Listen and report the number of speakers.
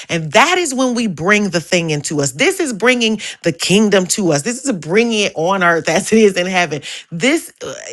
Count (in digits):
1